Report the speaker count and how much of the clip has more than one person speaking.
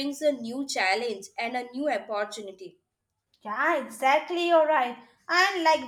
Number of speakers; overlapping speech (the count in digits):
2, no overlap